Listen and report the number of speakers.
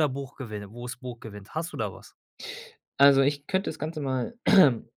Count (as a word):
two